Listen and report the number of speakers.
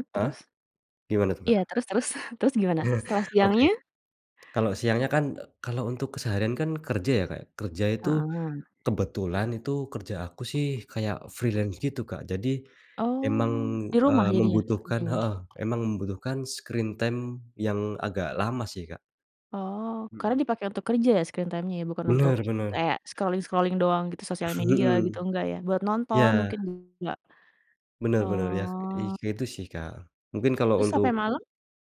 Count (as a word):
two